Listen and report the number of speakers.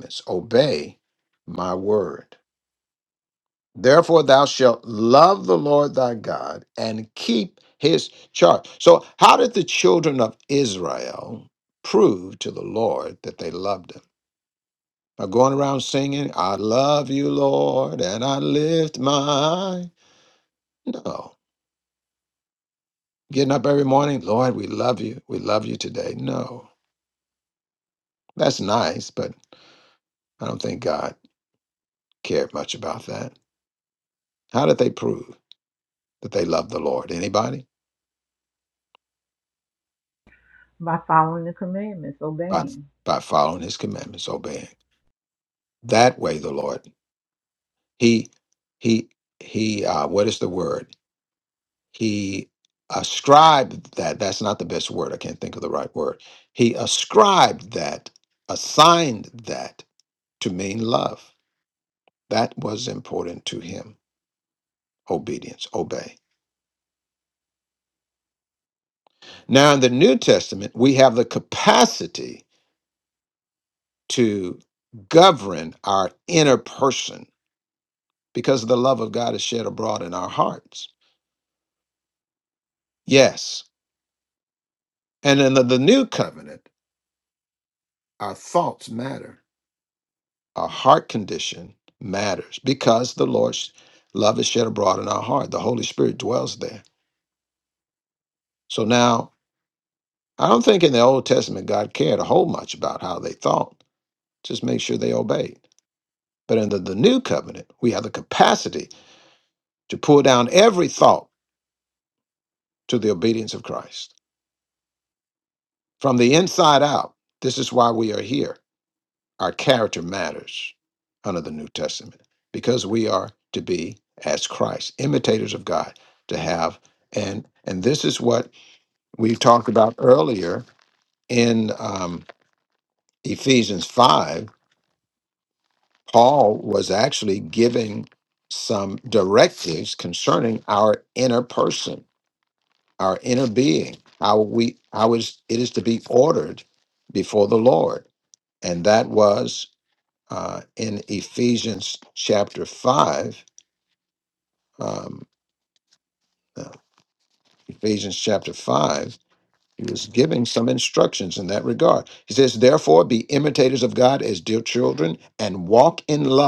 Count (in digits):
2